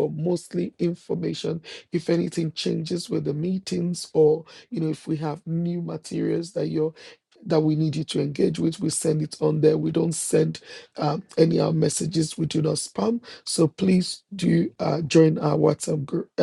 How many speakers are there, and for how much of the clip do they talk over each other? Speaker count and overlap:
one, no overlap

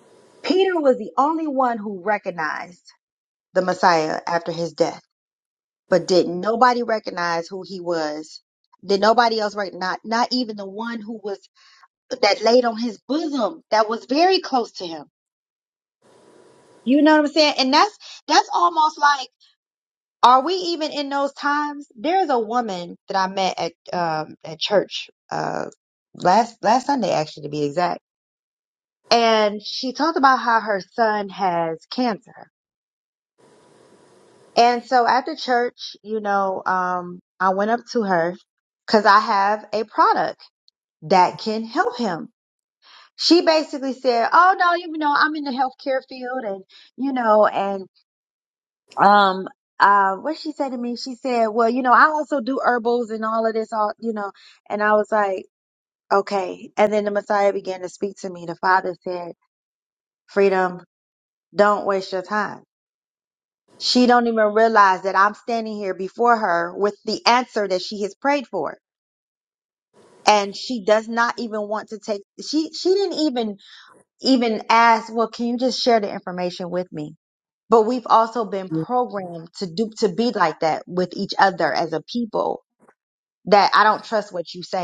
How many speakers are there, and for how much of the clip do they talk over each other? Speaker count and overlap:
one, no overlap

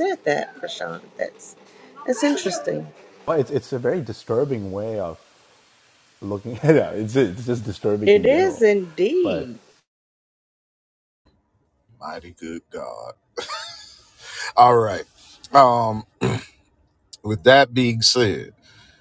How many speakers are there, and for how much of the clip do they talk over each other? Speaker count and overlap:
three, about 4%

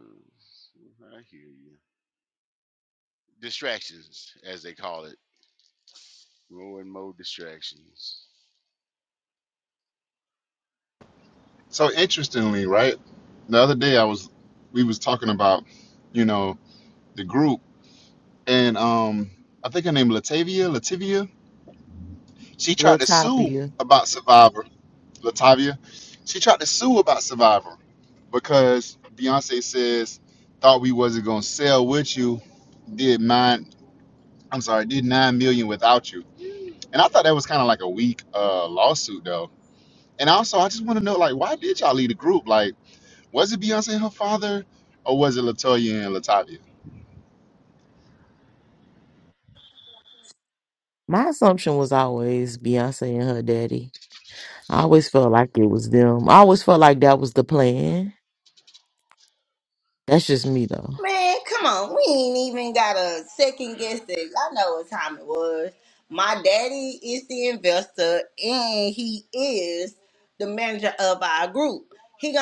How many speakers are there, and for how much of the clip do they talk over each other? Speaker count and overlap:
four, about 1%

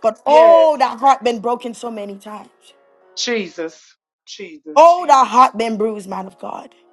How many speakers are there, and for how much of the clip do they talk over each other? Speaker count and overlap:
two, about 10%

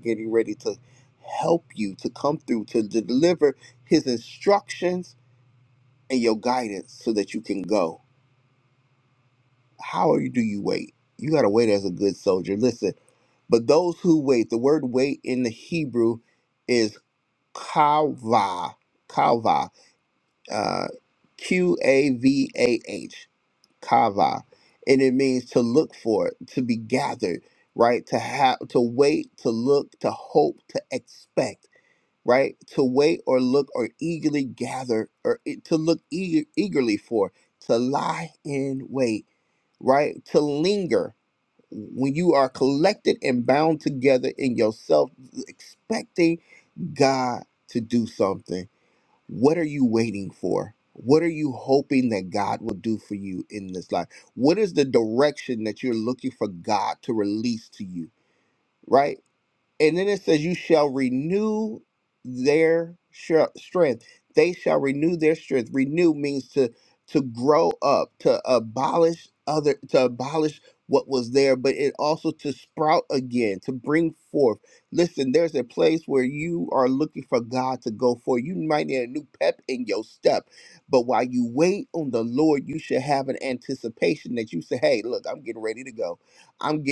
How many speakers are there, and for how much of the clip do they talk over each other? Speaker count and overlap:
one, no overlap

